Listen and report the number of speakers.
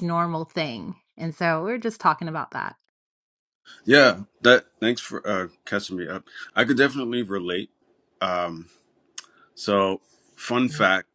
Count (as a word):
two